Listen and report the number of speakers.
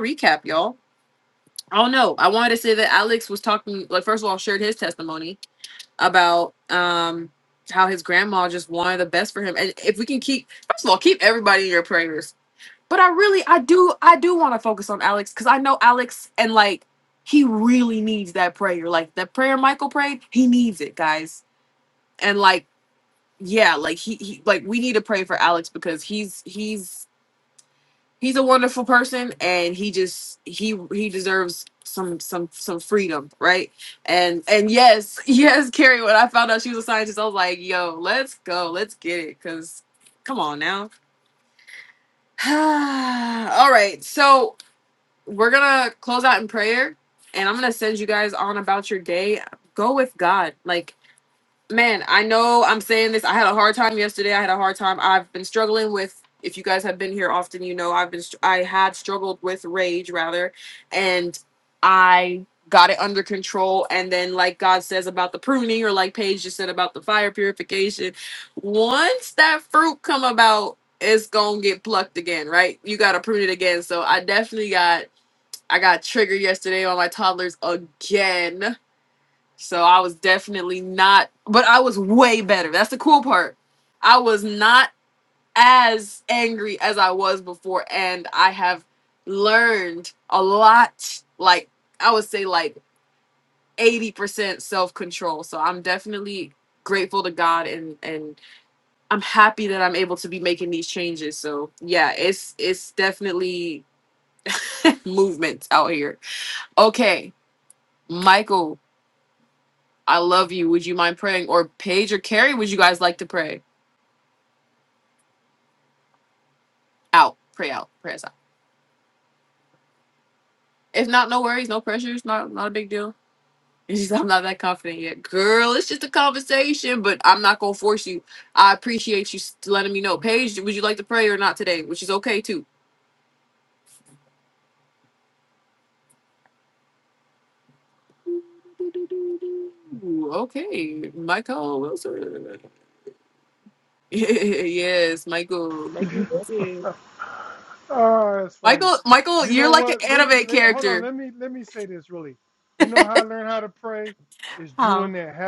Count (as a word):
two